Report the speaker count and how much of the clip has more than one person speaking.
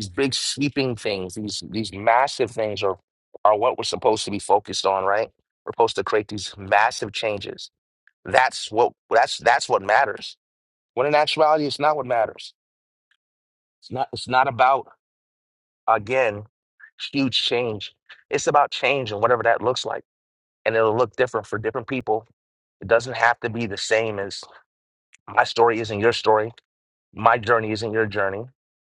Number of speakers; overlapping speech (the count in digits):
1, no overlap